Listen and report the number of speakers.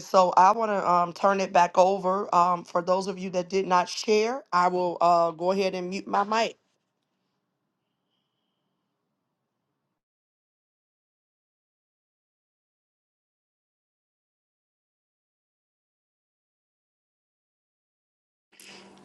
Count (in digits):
1